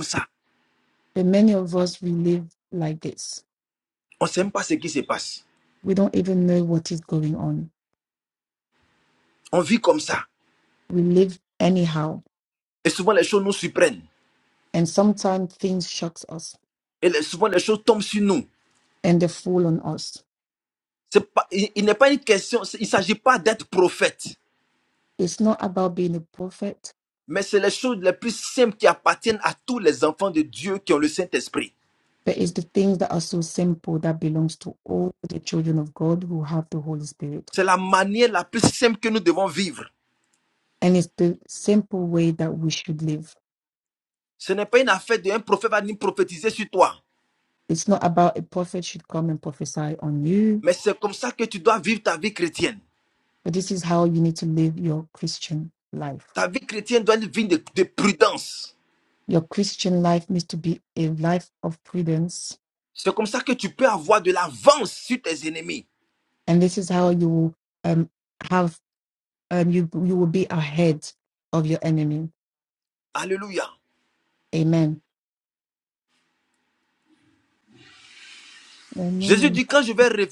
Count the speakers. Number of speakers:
2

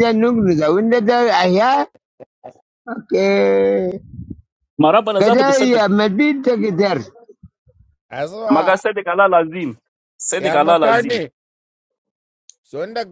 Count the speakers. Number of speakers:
3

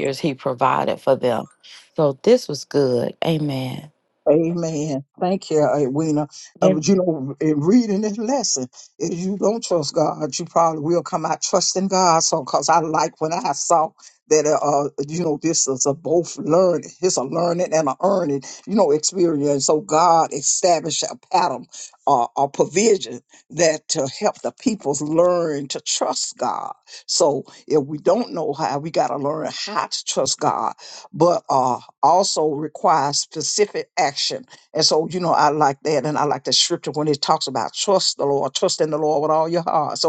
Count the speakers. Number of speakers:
2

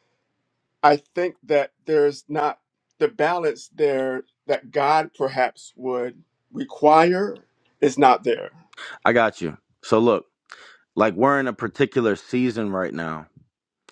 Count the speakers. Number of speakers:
2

